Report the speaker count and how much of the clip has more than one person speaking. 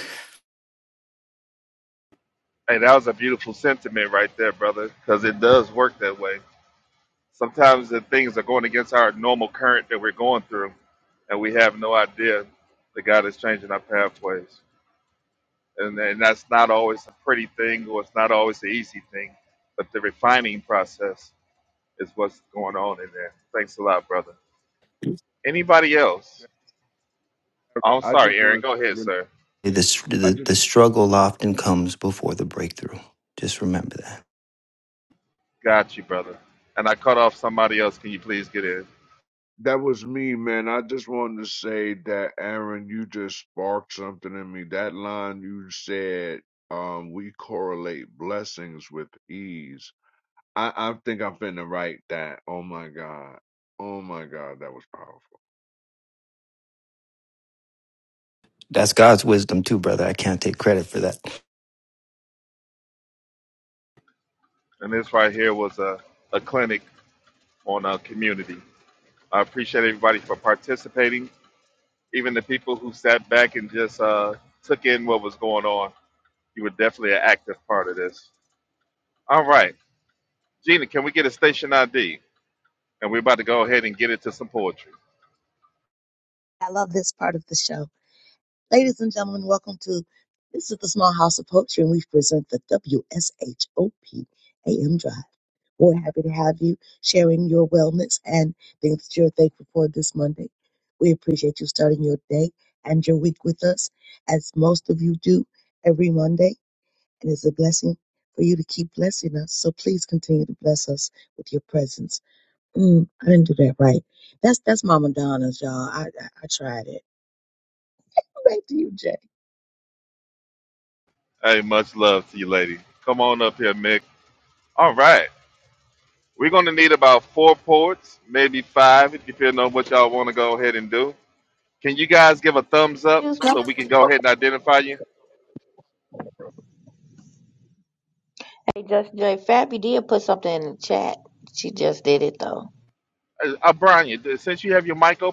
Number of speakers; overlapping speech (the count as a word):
five, about 1%